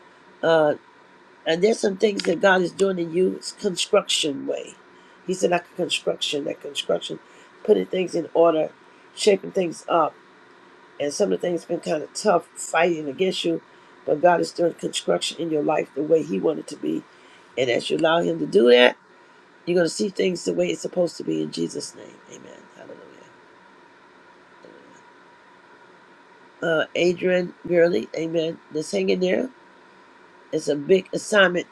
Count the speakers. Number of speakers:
1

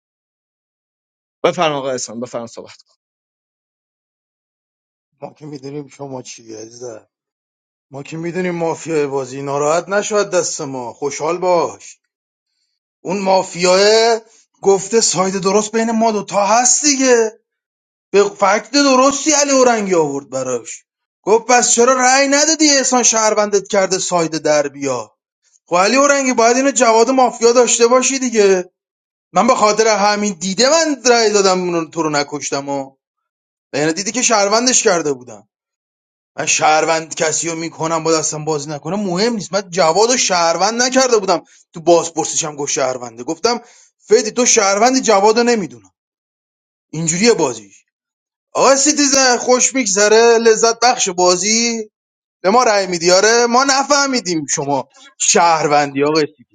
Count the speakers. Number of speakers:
2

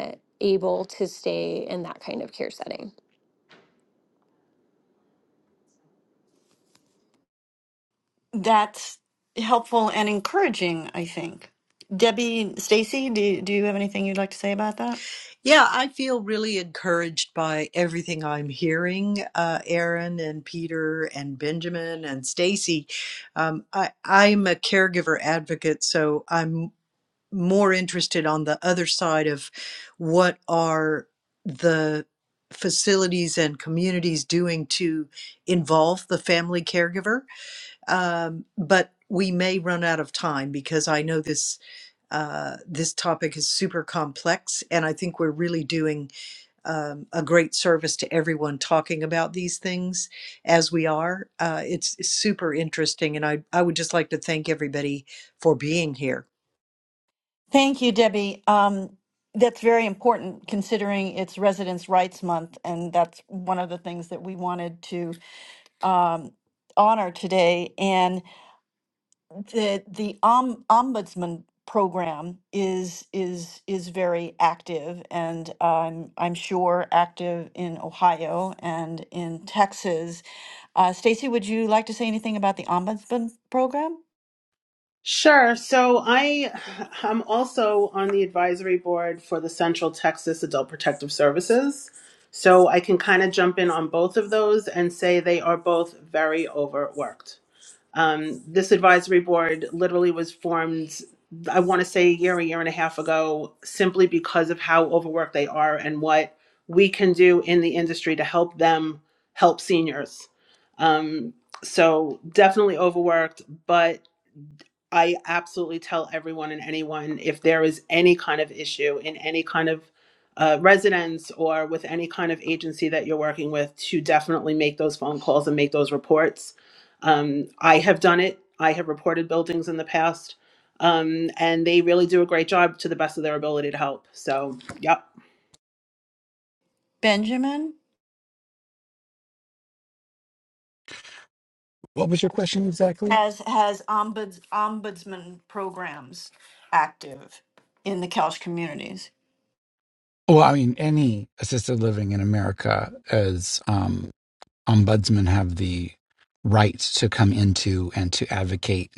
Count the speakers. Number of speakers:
5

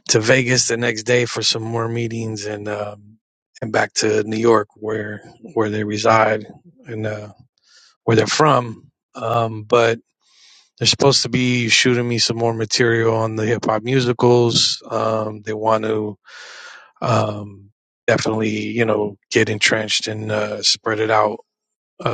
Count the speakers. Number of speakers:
1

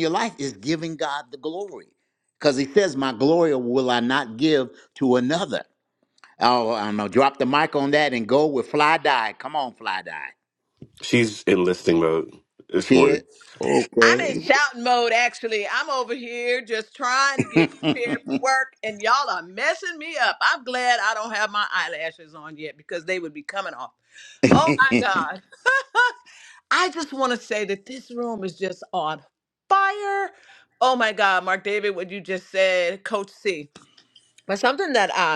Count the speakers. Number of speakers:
3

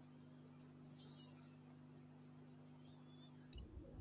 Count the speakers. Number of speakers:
0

